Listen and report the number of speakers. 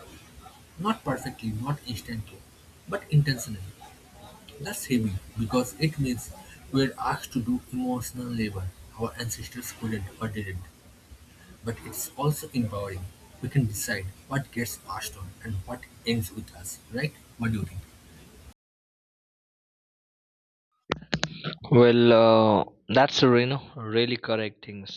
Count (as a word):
two